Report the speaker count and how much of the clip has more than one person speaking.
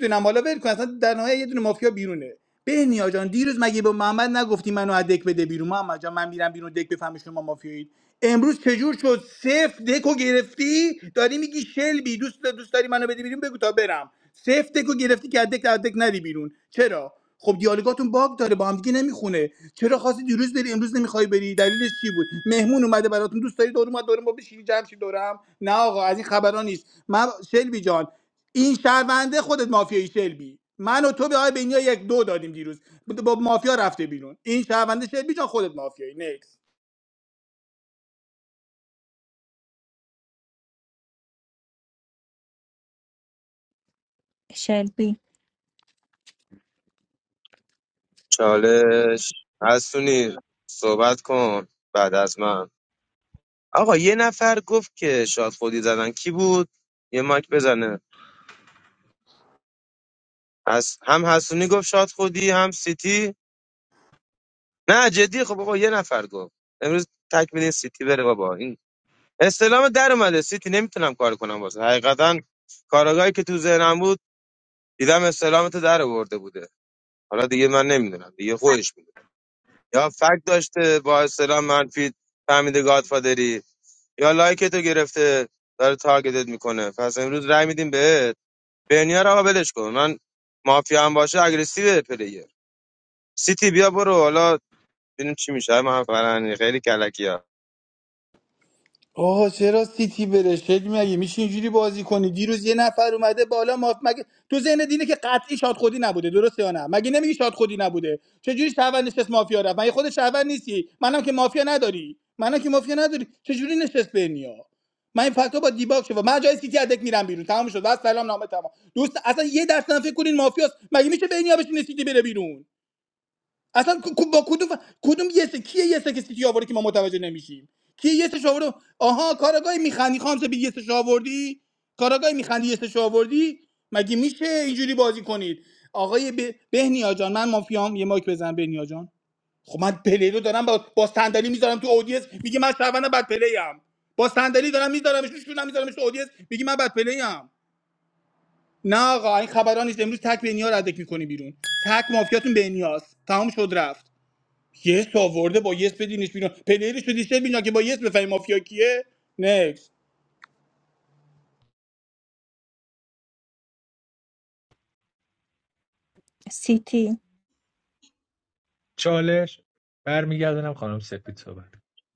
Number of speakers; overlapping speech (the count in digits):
4, no overlap